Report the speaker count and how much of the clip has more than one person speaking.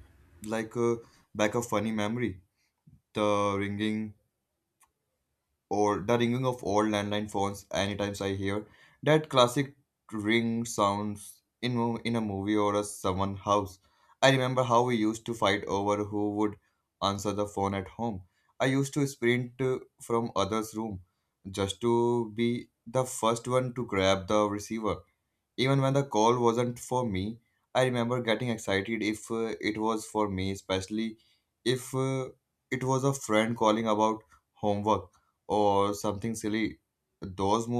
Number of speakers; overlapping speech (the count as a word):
one, no overlap